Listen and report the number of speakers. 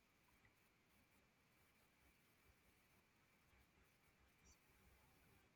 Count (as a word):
zero